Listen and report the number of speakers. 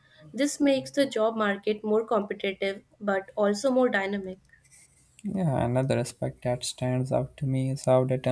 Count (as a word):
two